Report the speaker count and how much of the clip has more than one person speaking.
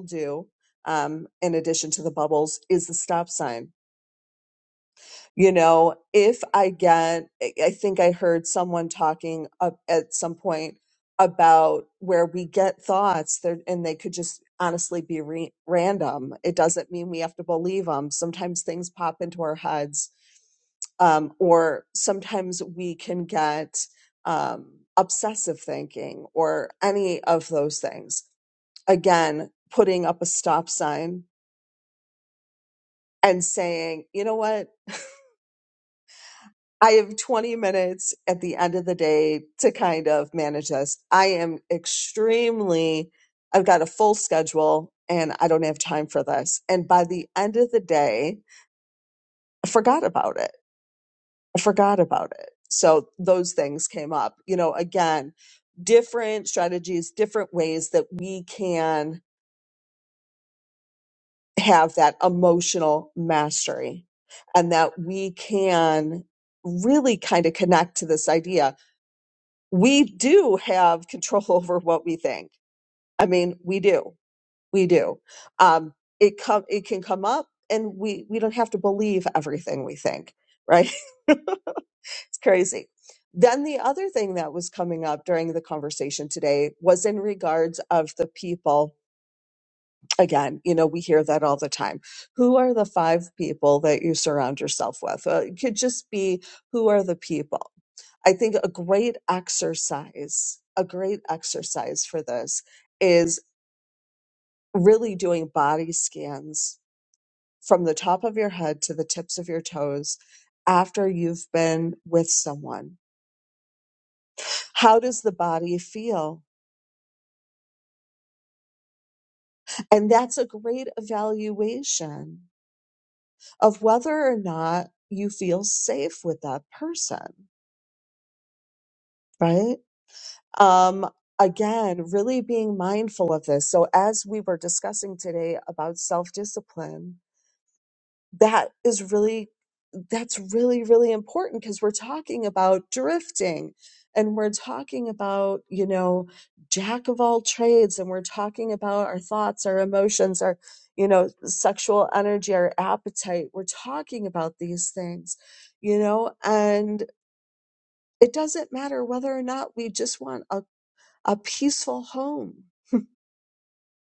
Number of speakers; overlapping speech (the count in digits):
1, no overlap